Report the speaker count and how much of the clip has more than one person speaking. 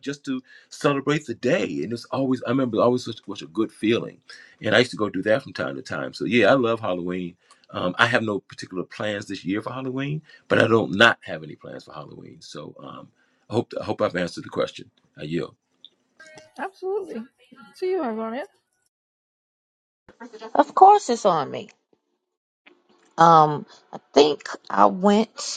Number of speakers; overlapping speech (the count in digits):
3, no overlap